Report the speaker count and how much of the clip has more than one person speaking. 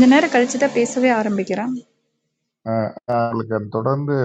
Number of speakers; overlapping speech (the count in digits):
2, no overlap